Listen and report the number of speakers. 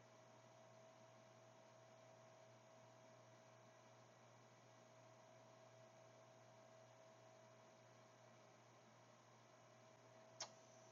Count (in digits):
0